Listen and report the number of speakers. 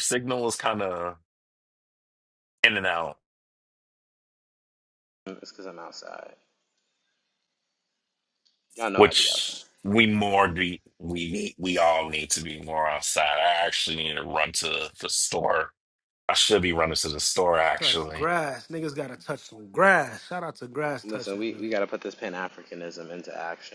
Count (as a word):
three